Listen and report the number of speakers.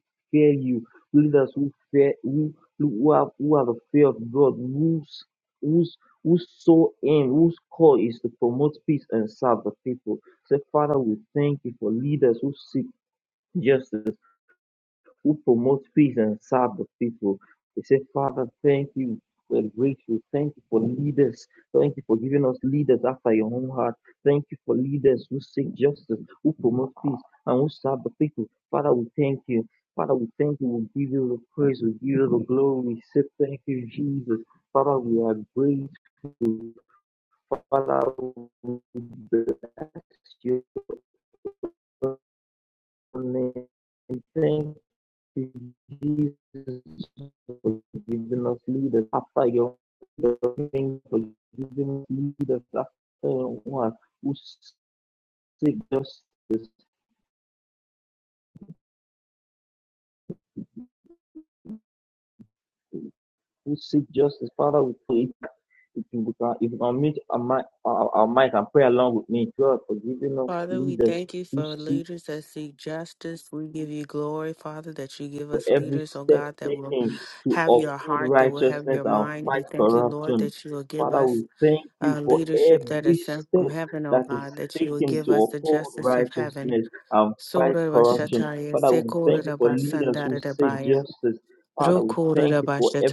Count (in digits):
2